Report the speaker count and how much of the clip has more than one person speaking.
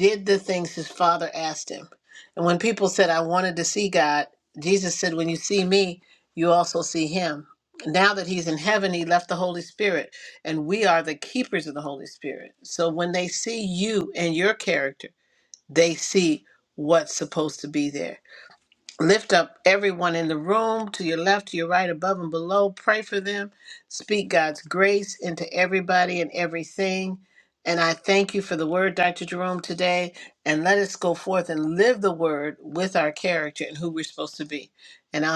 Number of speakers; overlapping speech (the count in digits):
1, no overlap